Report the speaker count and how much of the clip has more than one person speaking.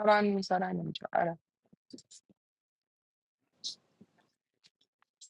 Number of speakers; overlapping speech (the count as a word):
one, no overlap